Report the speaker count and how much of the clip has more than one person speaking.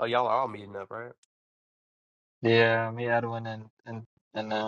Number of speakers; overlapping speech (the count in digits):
2, no overlap